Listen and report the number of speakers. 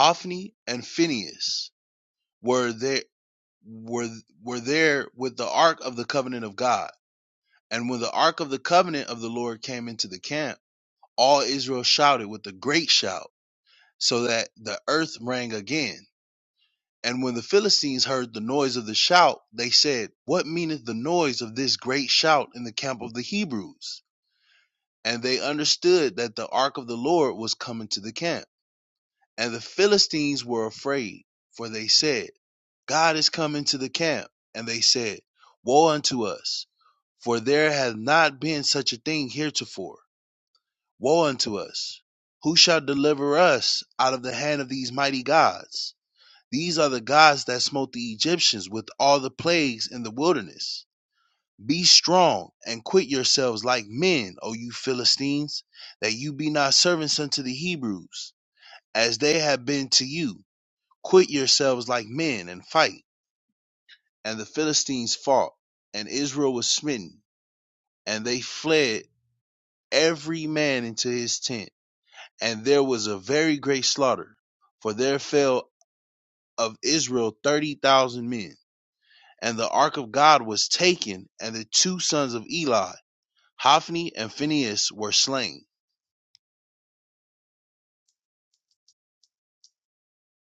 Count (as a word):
one